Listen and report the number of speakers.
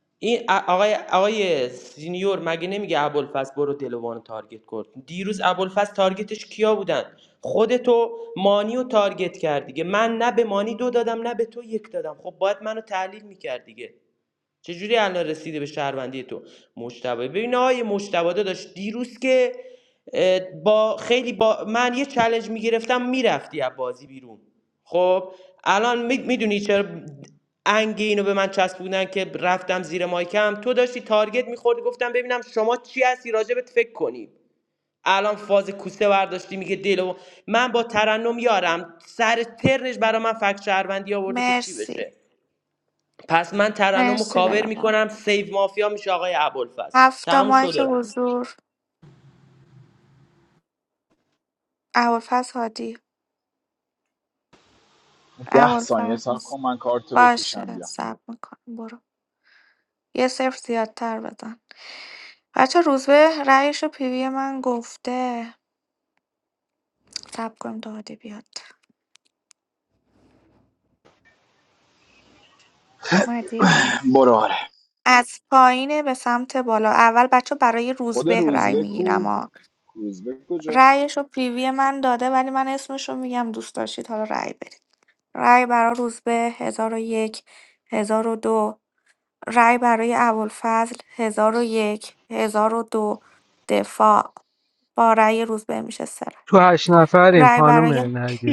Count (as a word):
four